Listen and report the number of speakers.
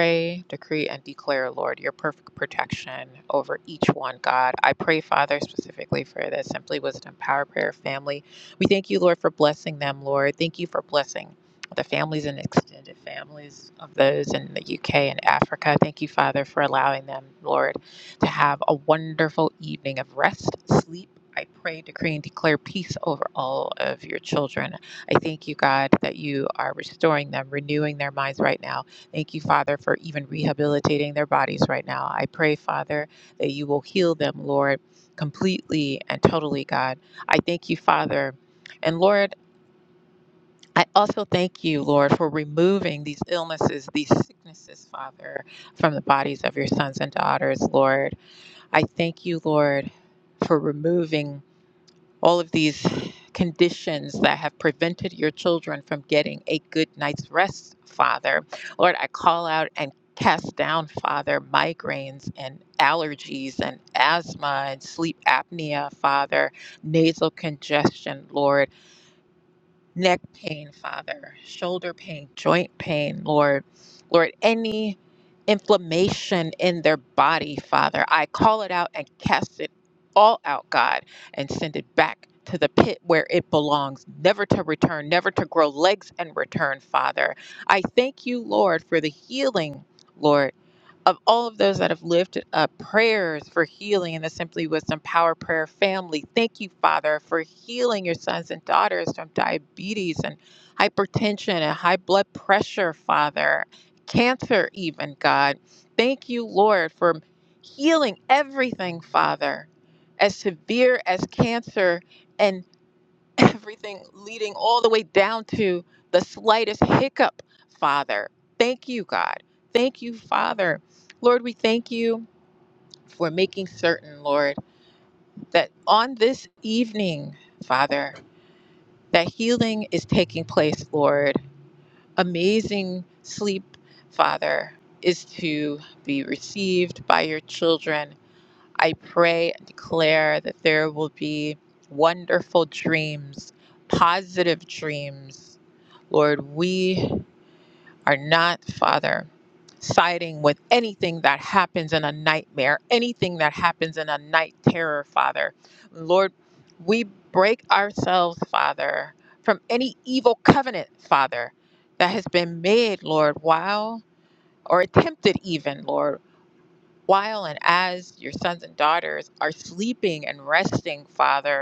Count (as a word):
one